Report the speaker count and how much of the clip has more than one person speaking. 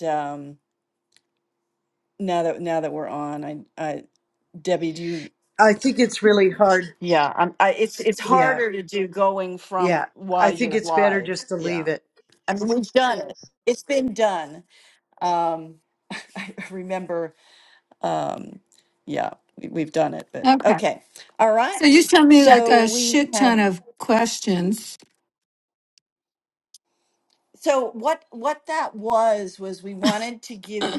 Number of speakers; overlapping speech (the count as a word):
three, about 13%